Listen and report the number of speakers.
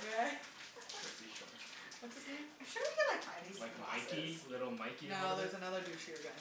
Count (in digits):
3